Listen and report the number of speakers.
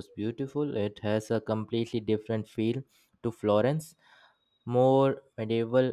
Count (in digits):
1